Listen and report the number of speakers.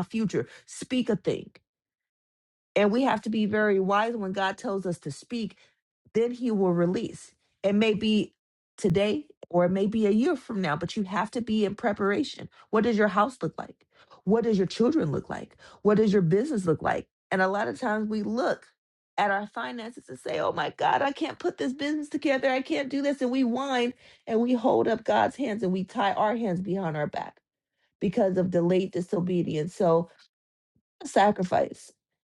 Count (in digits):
1